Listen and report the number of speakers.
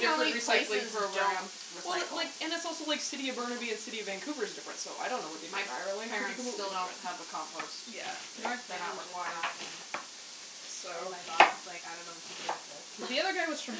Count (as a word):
three